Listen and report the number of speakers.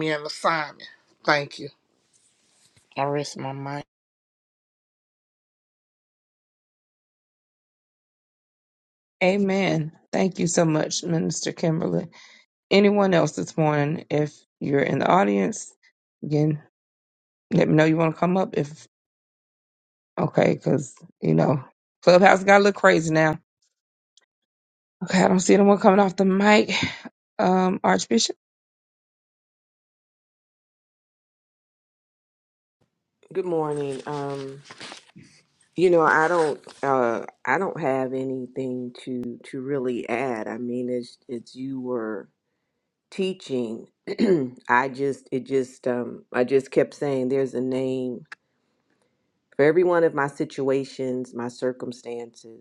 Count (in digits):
3